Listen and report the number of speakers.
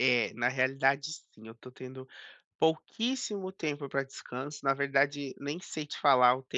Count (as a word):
one